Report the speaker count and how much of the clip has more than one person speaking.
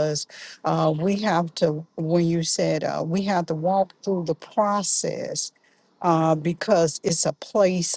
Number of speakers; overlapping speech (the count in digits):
1, no overlap